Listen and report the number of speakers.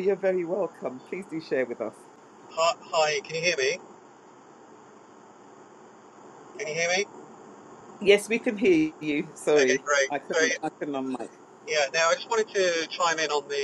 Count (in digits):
2